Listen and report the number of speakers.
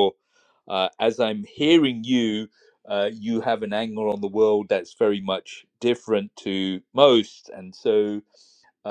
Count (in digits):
1